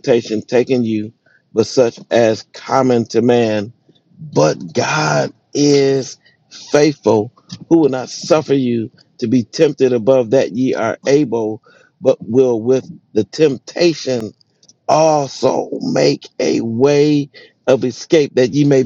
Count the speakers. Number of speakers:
1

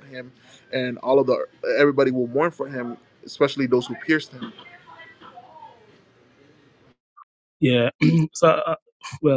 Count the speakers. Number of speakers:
2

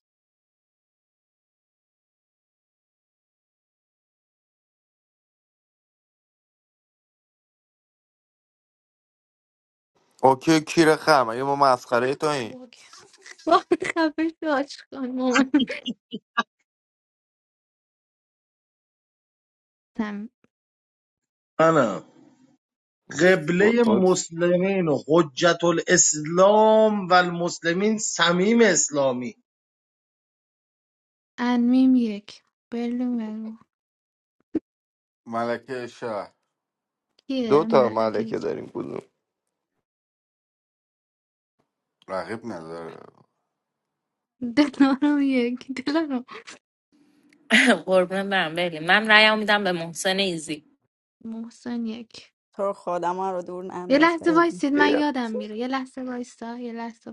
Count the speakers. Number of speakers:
6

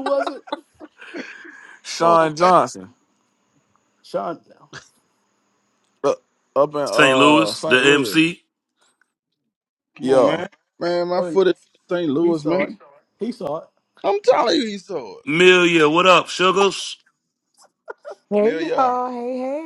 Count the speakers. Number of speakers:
5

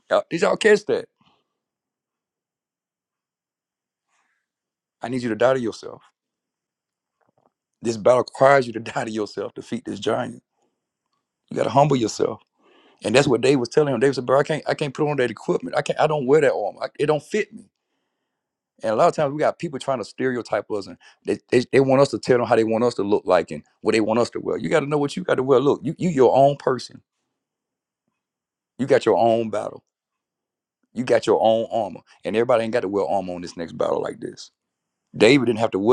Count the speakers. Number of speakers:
1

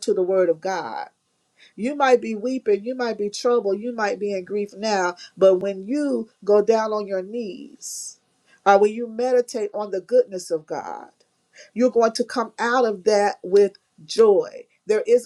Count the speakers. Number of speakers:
1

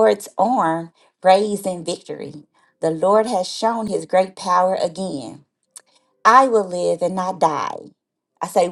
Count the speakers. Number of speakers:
1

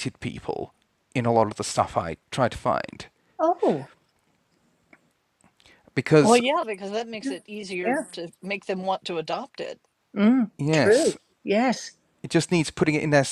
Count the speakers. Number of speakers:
3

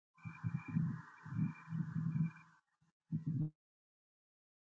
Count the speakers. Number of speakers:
0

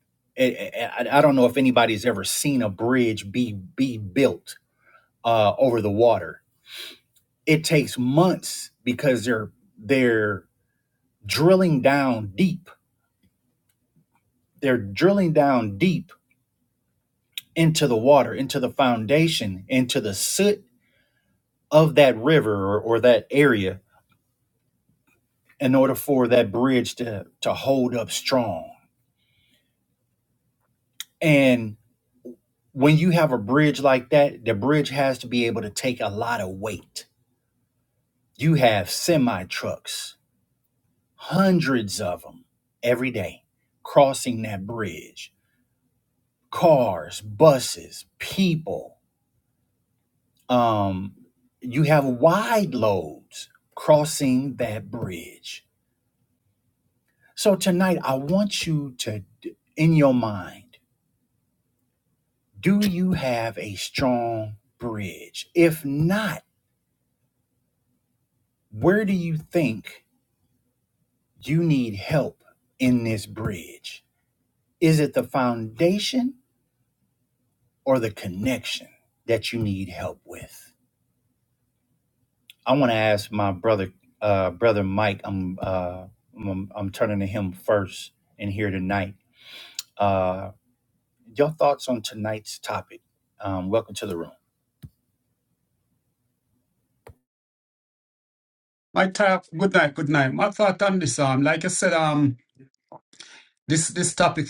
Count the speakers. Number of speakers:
2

